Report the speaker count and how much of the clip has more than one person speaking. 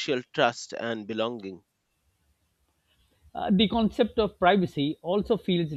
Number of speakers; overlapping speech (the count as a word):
two, no overlap